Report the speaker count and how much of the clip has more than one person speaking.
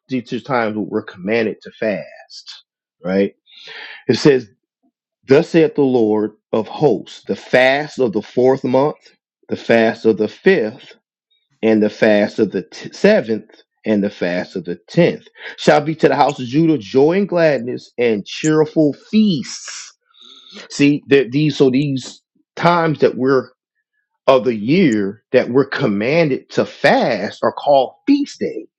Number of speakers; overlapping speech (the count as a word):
one, no overlap